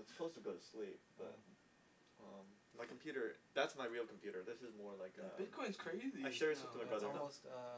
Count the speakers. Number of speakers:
three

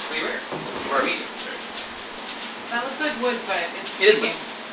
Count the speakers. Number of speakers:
two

